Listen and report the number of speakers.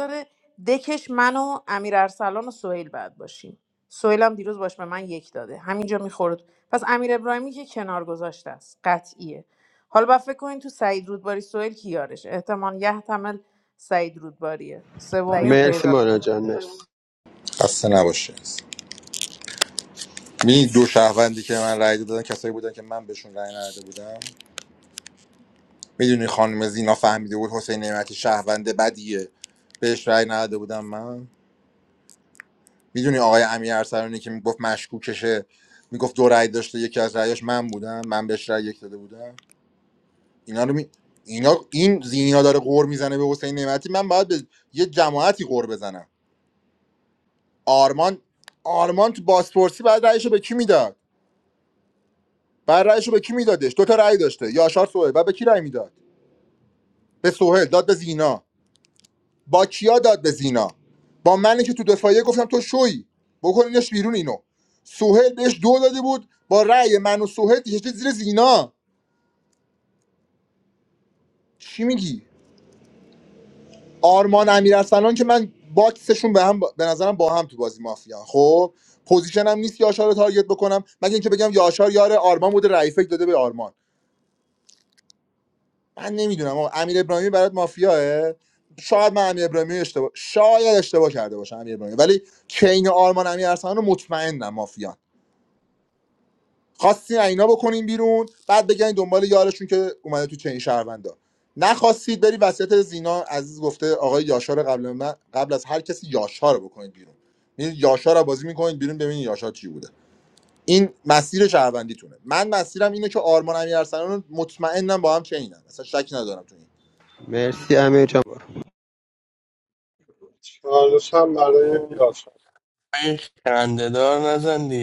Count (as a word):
five